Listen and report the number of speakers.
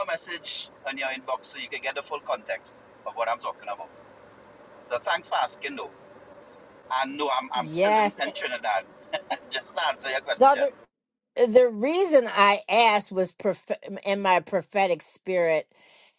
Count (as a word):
two